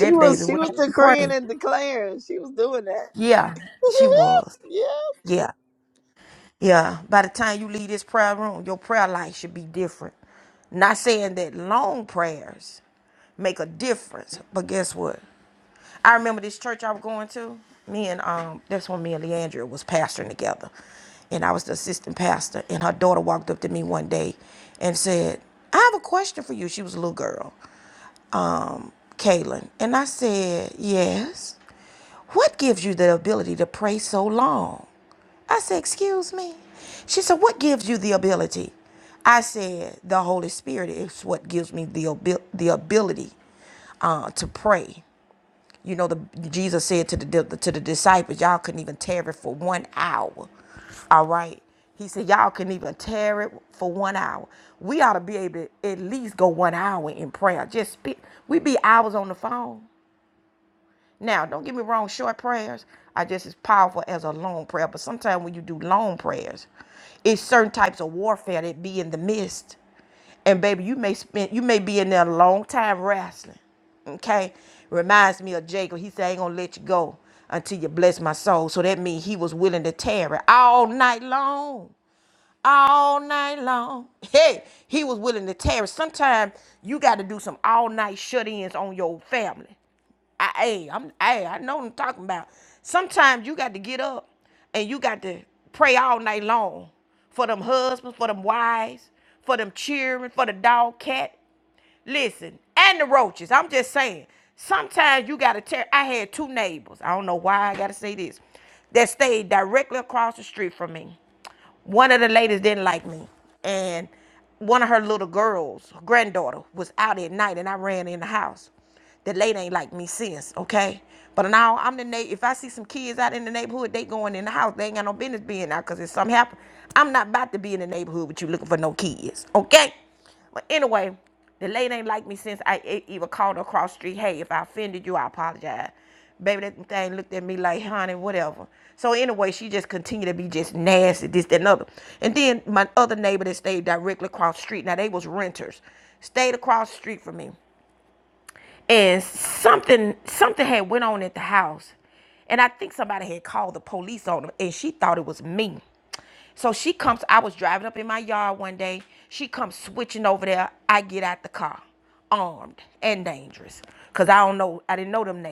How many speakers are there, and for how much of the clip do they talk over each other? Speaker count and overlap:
2, about 1%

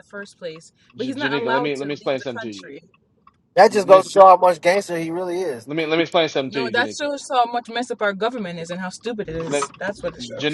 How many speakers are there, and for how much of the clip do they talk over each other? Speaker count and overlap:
3, about 28%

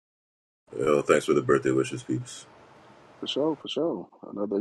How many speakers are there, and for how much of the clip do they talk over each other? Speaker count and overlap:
2, no overlap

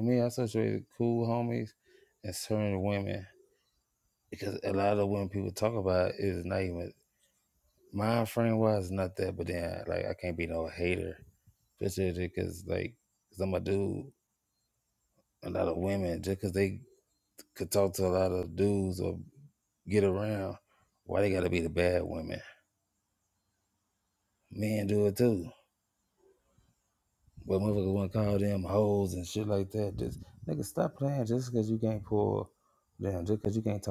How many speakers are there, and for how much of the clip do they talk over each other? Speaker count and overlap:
1, no overlap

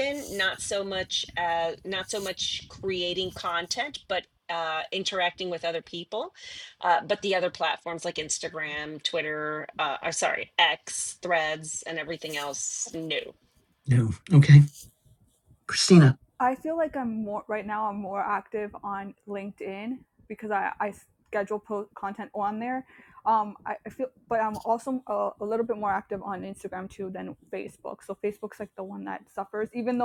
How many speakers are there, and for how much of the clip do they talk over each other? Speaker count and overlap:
3, no overlap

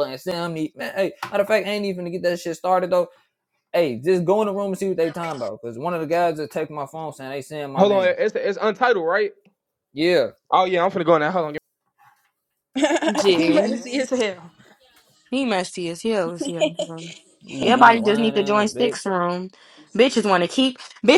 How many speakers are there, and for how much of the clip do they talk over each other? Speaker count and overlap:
4, about 10%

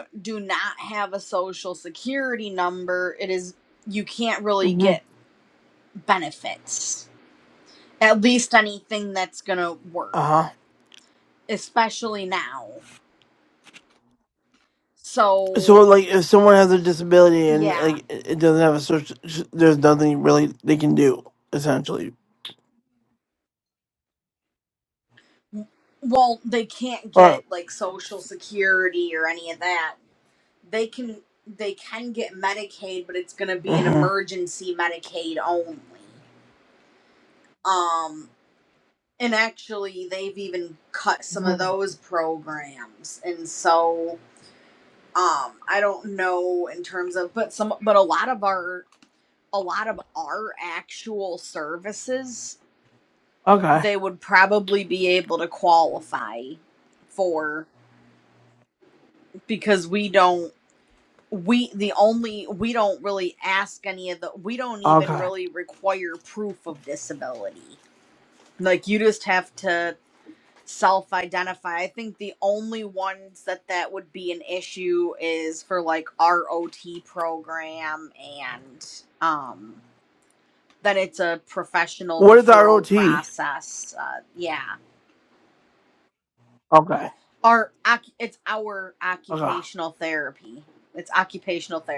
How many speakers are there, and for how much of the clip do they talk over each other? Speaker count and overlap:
2, about 4%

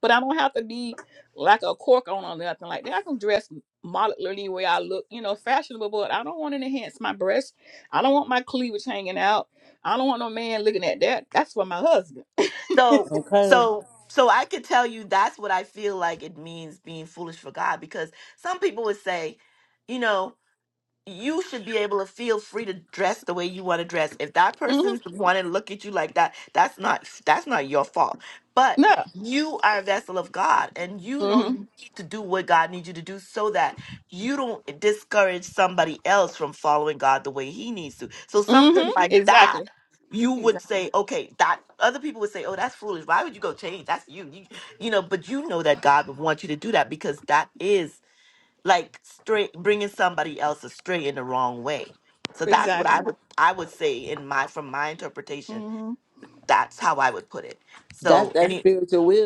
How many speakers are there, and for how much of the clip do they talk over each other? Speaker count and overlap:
3, about 6%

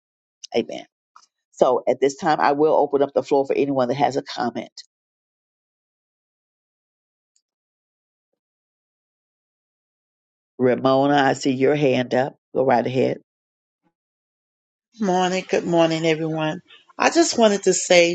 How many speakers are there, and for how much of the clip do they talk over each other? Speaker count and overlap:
2, no overlap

